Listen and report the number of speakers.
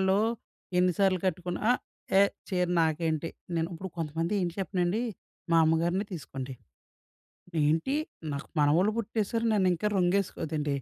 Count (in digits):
1